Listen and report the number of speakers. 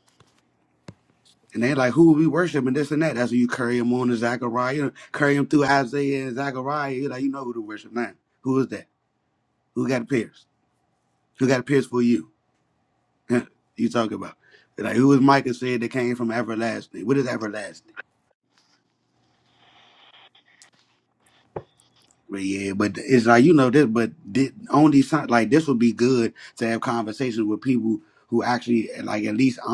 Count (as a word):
one